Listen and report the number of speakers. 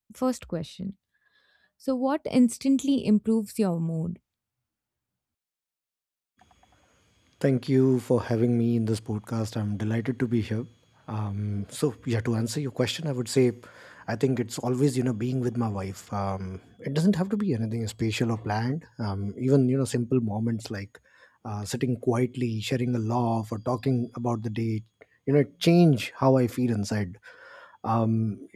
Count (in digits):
2